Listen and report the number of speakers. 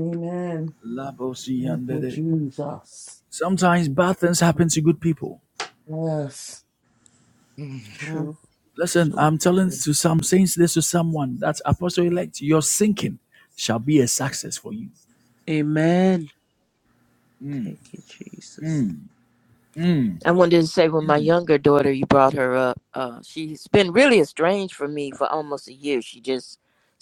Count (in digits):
4